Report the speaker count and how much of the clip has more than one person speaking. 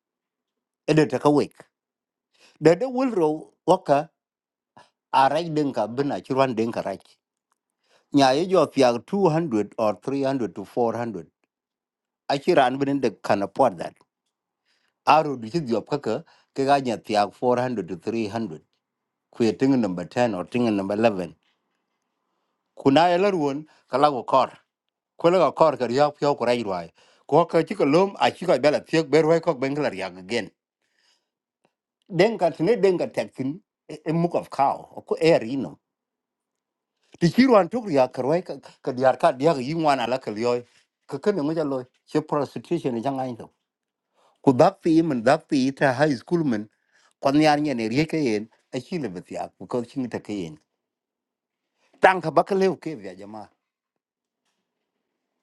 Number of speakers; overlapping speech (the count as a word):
one, no overlap